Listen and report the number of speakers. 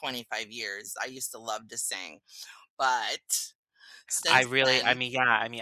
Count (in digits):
2